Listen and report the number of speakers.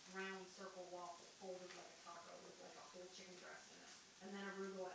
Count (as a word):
one